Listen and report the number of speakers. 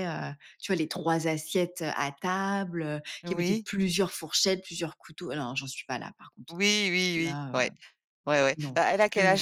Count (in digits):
2